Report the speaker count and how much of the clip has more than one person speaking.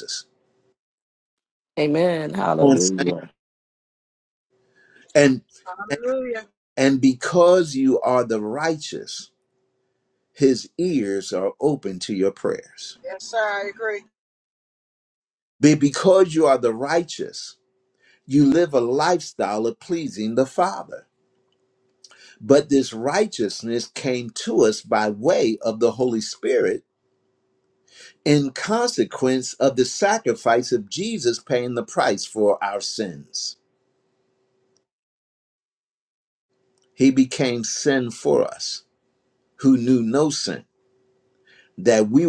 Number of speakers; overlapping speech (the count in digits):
3, about 1%